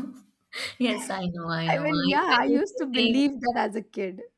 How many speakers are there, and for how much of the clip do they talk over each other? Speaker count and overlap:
two, about 36%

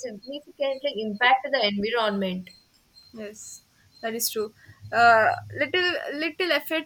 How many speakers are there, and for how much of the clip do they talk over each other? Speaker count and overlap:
two, no overlap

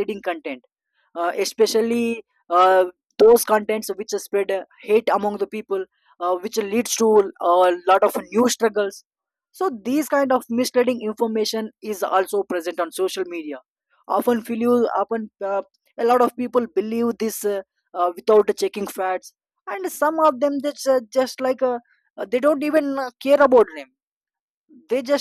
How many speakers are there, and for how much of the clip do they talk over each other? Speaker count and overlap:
one, no overlap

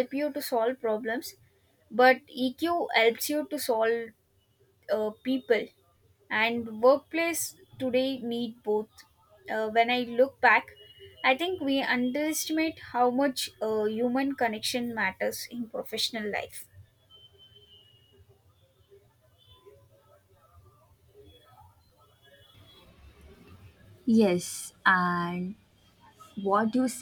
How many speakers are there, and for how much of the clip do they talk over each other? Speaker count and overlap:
two, no overlap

